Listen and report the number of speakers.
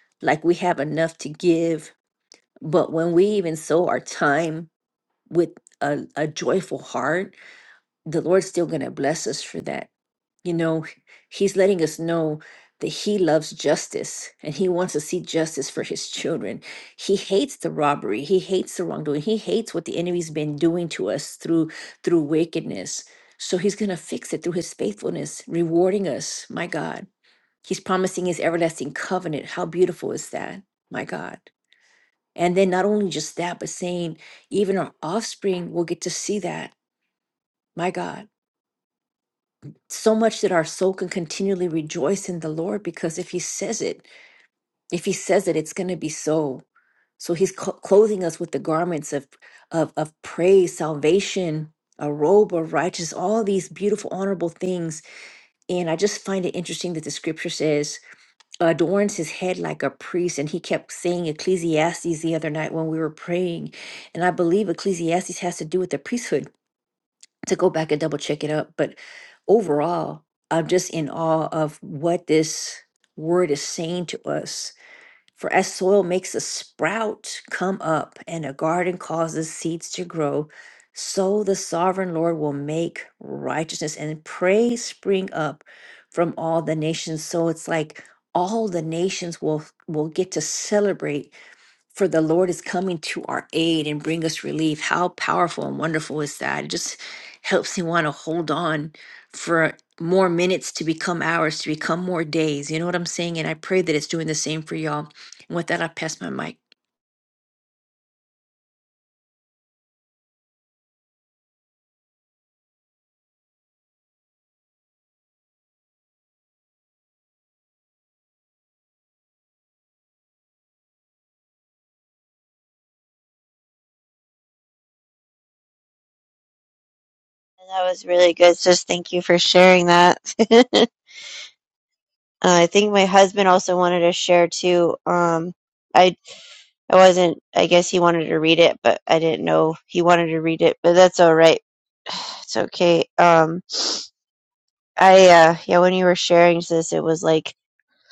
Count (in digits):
2